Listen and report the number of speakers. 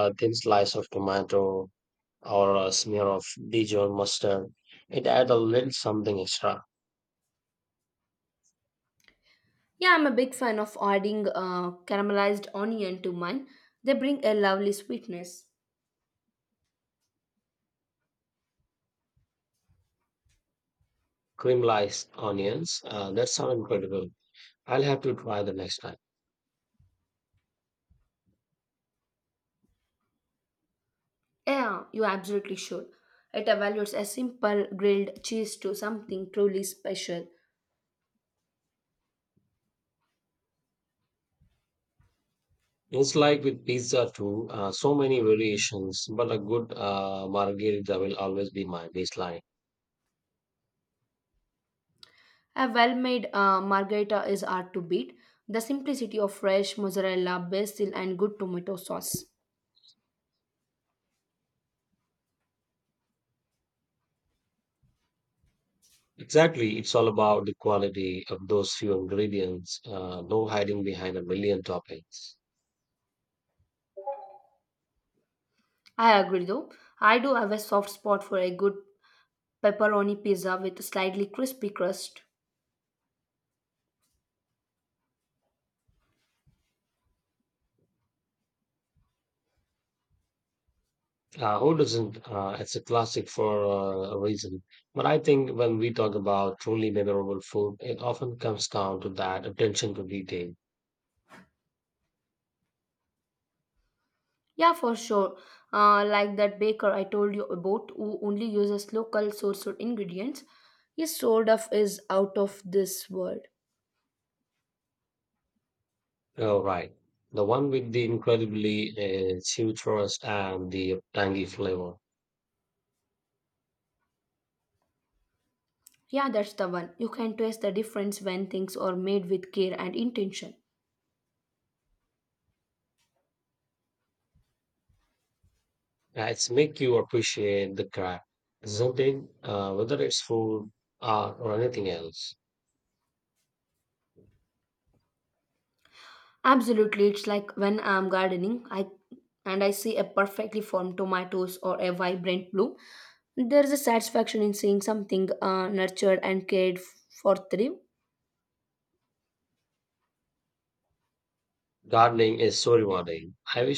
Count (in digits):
2